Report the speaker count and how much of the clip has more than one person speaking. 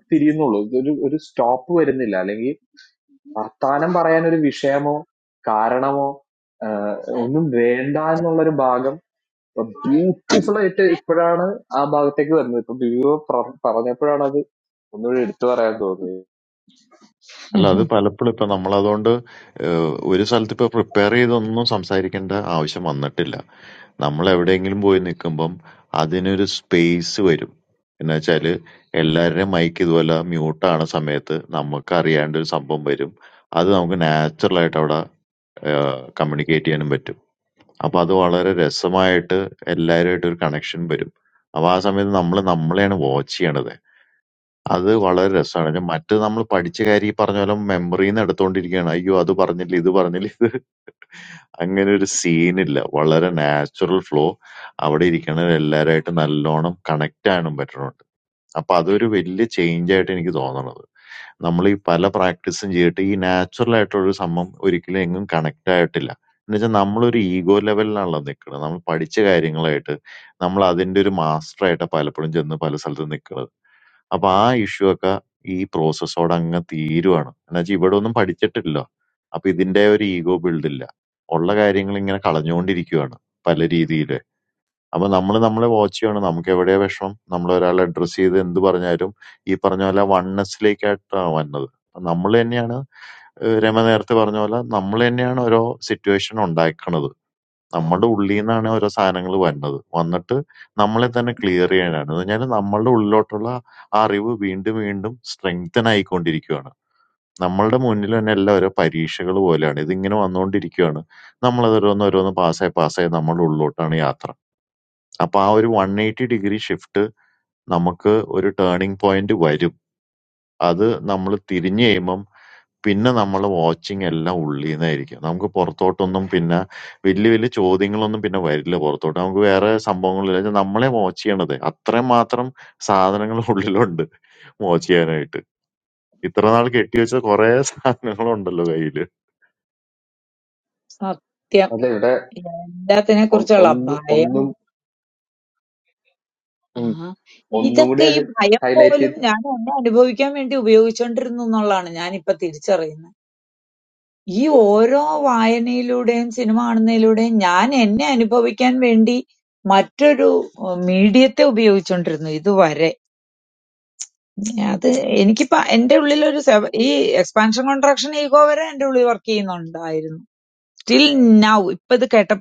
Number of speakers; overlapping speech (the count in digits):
3, about 2%